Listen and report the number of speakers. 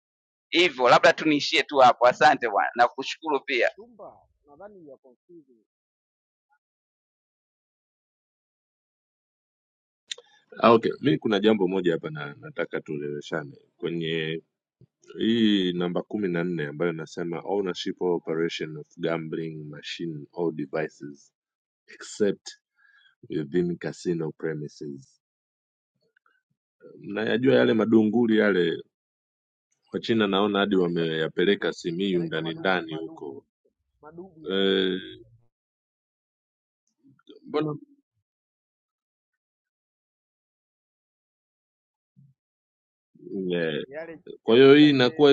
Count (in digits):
3